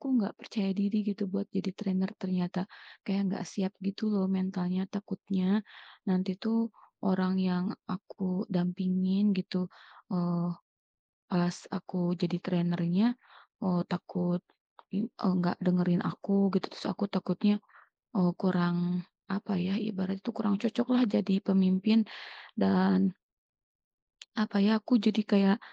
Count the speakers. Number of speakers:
one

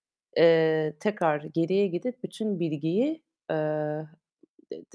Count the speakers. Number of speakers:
one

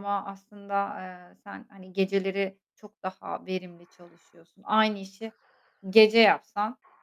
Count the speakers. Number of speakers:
one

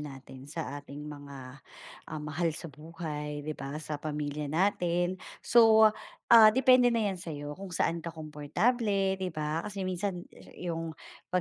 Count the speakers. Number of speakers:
one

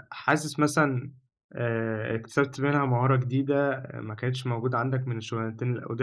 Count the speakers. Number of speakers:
one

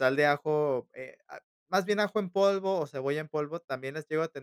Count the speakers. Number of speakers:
one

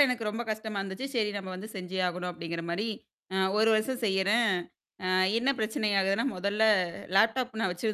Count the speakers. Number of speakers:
one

